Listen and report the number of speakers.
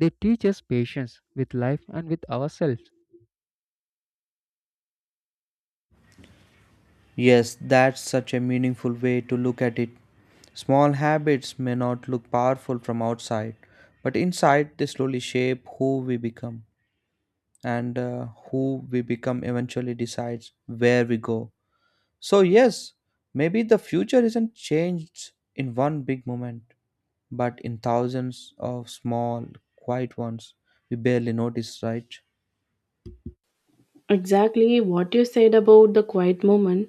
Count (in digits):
3